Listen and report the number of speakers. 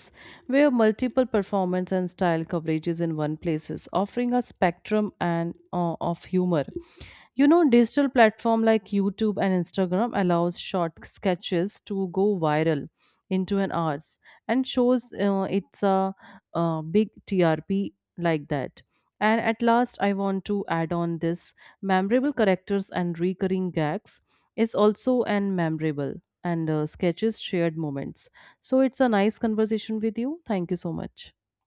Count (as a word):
one